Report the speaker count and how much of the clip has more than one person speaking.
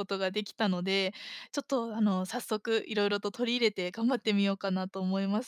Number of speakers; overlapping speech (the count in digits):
1, no overlap